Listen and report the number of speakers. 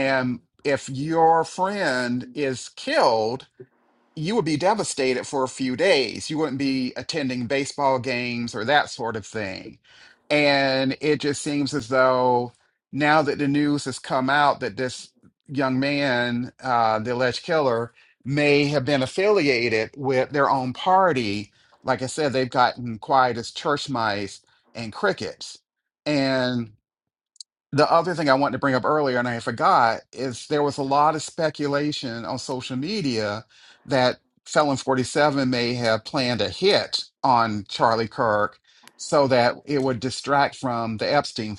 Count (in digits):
1